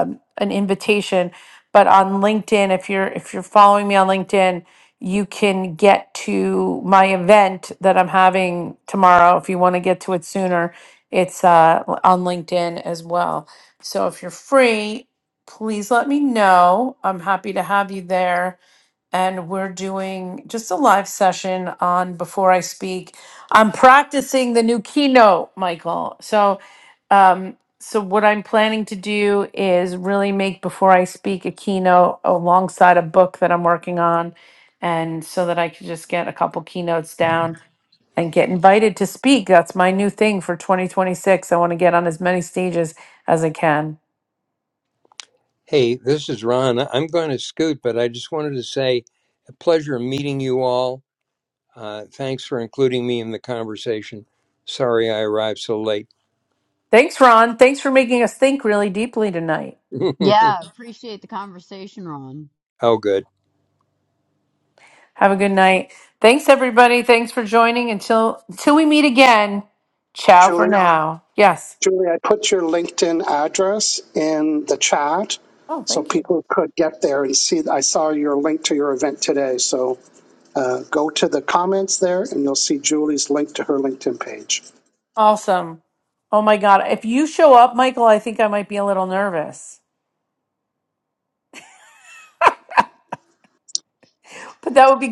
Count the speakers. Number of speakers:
4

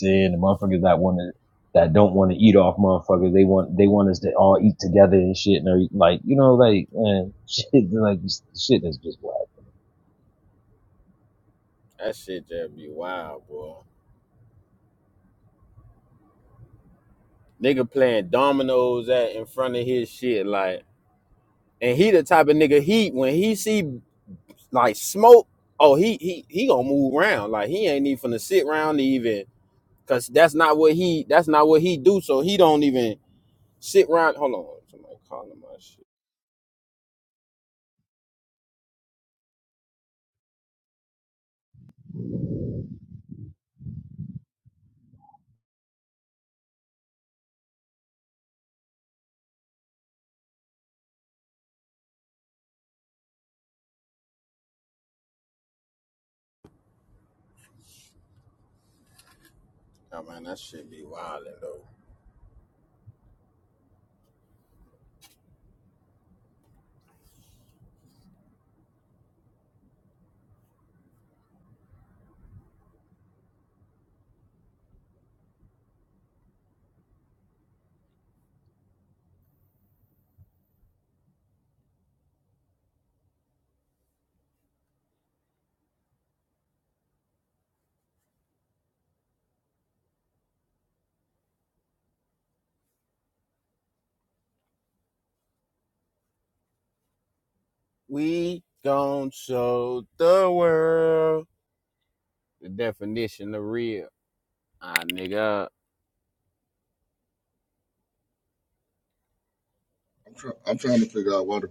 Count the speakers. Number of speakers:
3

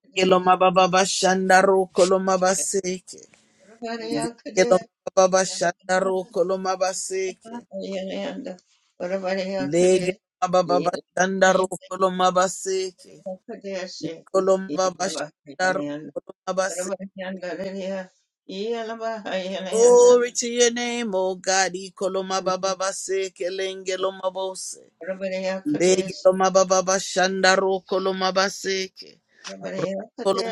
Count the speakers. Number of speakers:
2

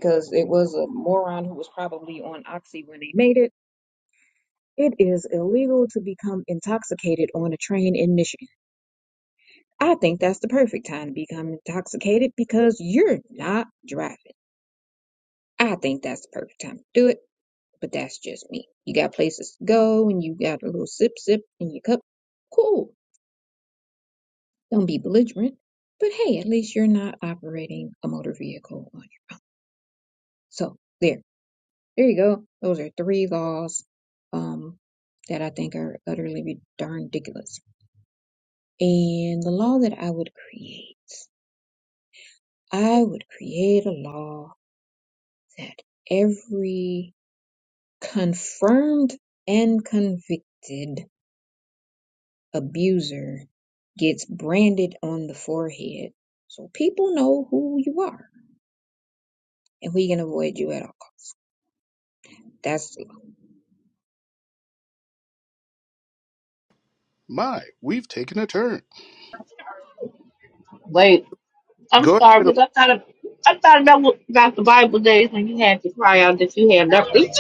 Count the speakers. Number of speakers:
3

